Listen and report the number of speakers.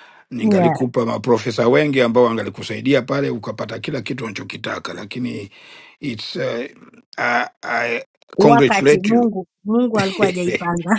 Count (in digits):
2